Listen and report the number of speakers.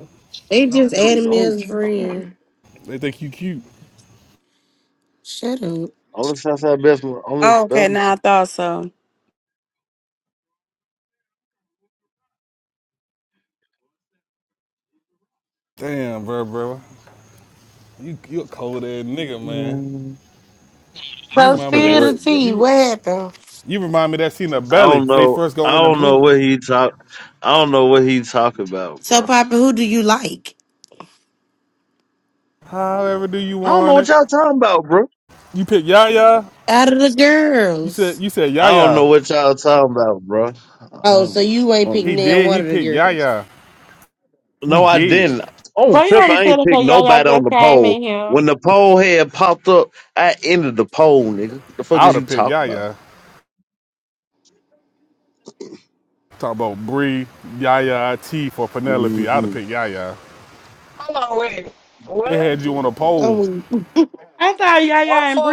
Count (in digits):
6